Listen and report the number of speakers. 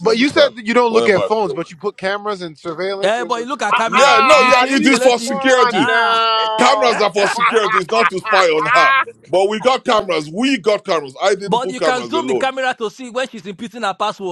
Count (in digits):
3